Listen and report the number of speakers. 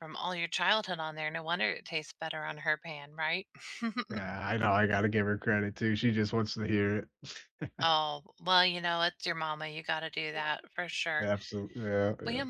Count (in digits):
2